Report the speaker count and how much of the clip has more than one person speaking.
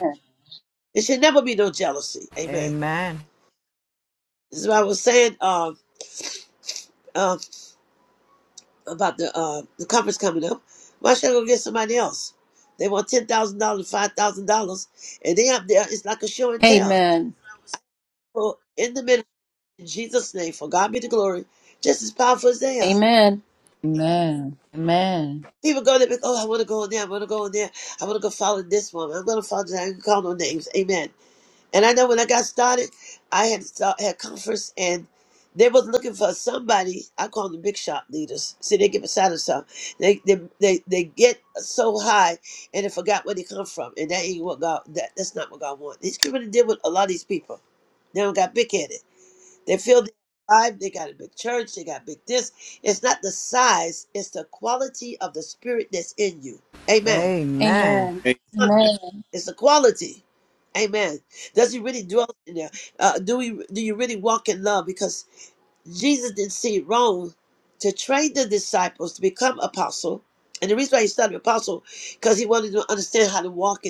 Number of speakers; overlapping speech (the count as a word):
four, about 2%